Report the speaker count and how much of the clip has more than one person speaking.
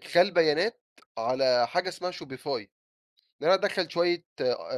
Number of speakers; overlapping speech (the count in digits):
1, no overlap